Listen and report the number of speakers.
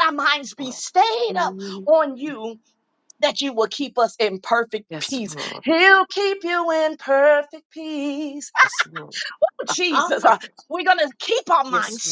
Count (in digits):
2